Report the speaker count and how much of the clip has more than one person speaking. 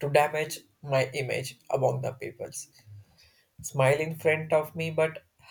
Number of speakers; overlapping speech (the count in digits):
1, no overlap